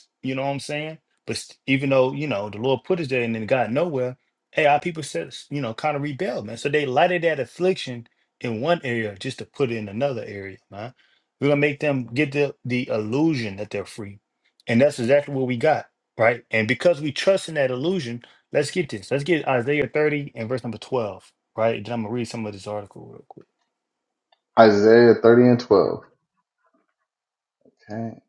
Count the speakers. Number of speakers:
two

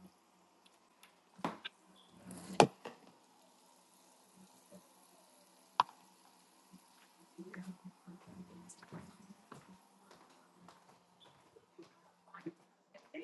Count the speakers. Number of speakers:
zero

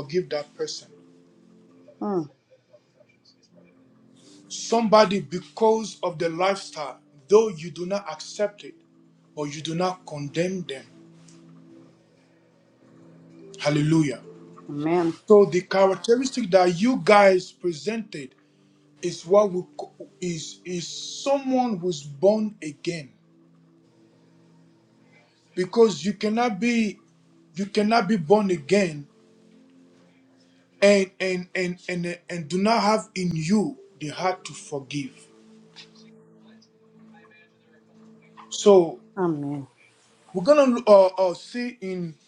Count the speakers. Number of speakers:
two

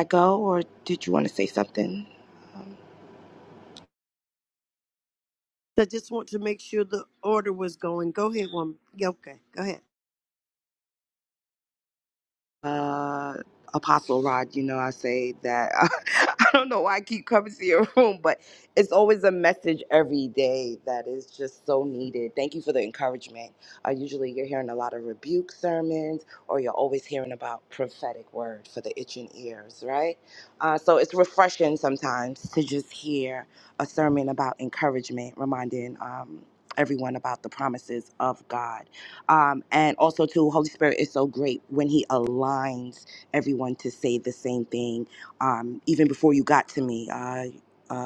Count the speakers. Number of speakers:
two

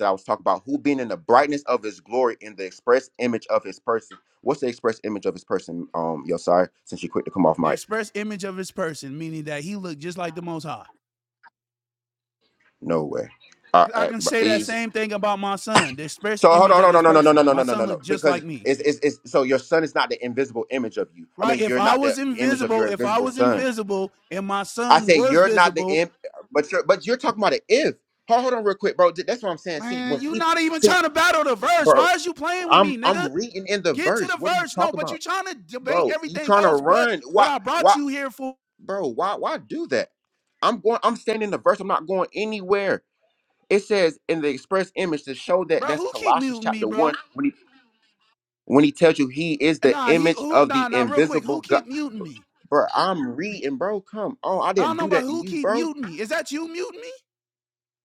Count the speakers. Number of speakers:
two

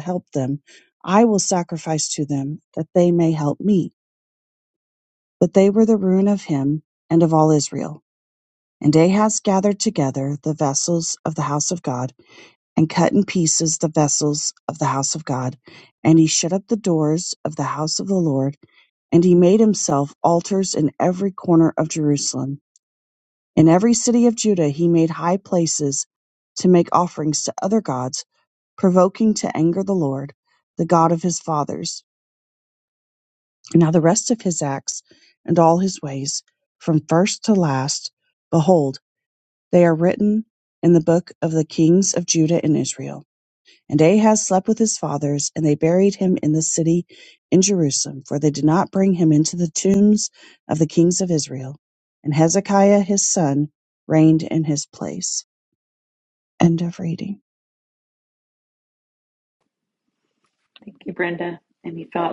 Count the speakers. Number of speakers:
two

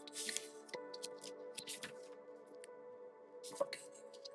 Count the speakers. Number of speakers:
zero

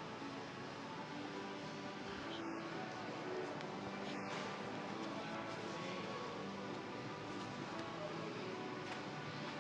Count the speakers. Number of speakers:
zero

